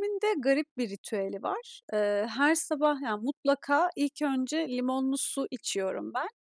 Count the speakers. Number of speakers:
1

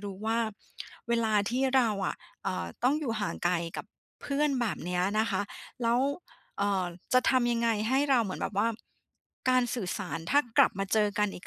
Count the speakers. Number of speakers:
1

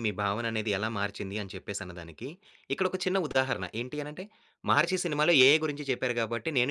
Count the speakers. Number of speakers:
1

